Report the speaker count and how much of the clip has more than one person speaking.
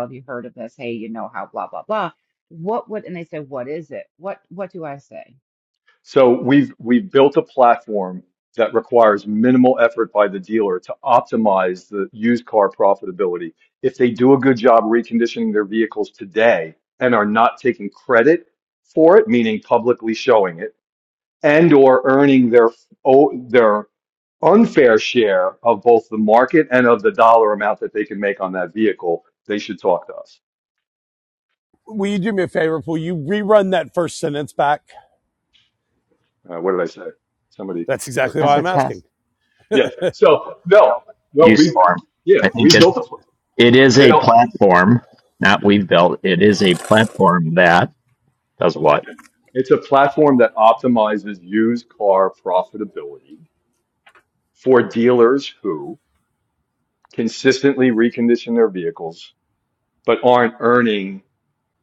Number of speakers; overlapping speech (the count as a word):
four, about 3%